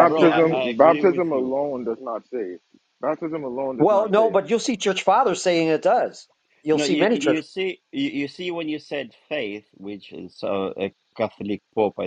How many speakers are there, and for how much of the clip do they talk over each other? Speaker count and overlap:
three, about 23%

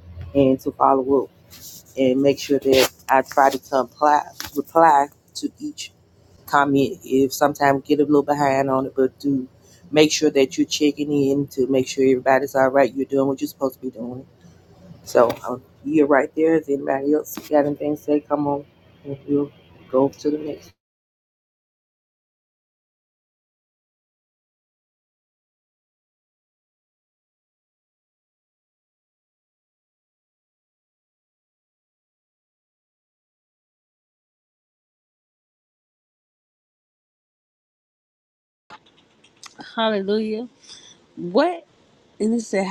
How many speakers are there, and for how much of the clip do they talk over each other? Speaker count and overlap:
two, no overlap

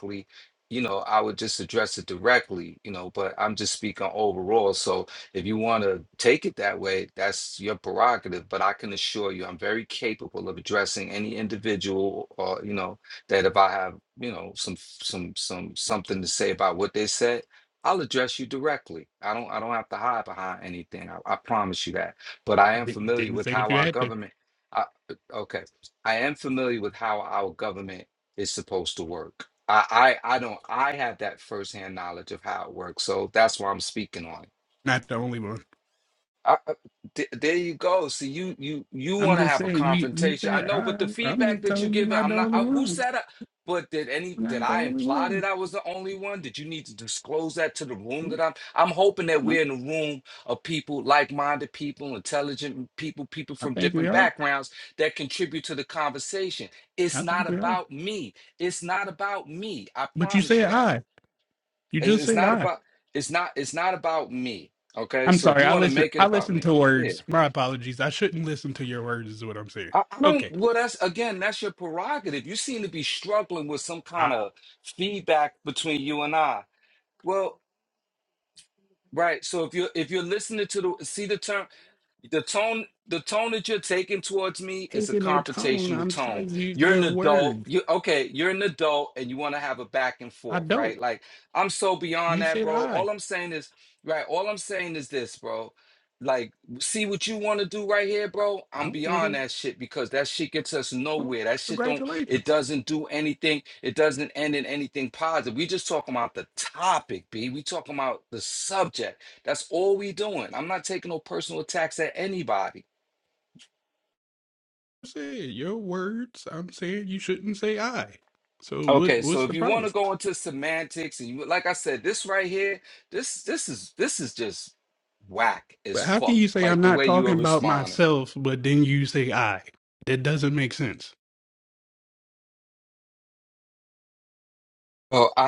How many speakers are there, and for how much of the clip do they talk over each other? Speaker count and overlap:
two, about 15%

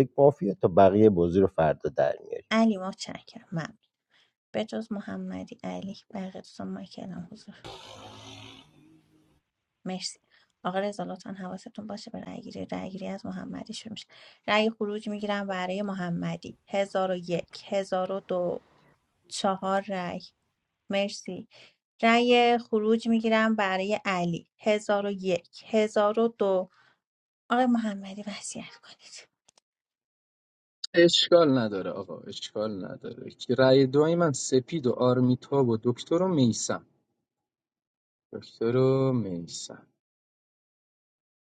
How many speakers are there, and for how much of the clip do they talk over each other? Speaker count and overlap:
three, no overlap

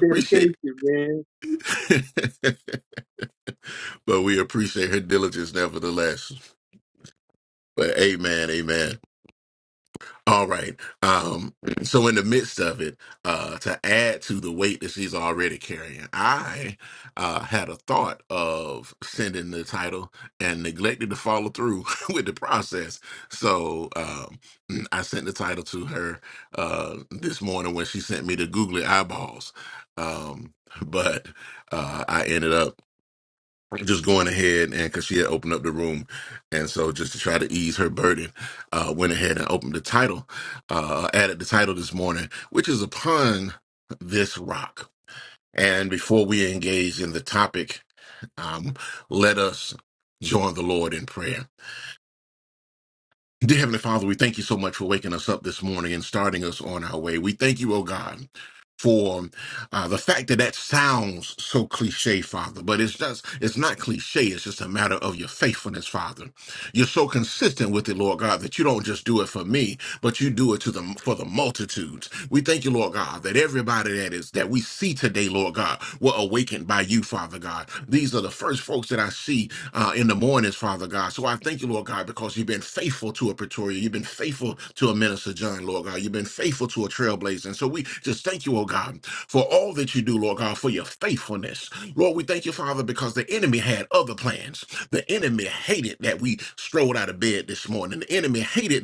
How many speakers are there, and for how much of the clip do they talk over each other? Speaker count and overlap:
two, about 1%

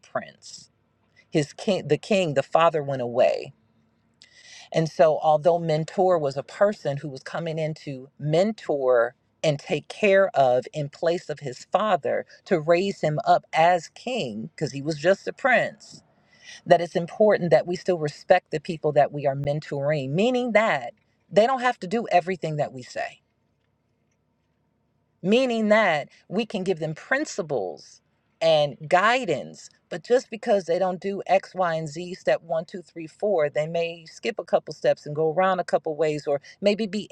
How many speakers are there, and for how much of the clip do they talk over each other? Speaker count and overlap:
one, no overlap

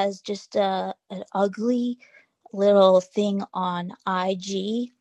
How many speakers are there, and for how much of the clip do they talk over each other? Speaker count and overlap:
one, no overlap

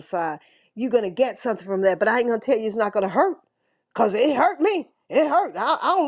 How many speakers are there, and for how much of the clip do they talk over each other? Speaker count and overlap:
one, no overlap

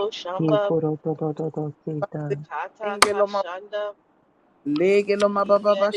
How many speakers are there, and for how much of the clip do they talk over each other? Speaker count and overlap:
three, about 24%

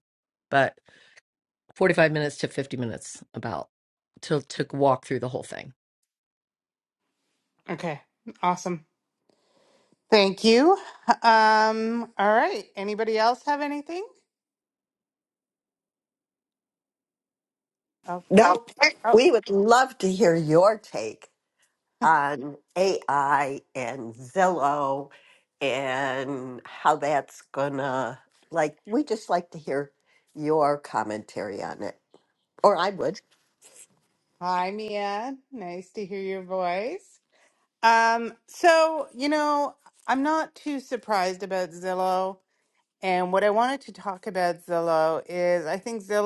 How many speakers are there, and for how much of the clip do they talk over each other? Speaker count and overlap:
three, about 1%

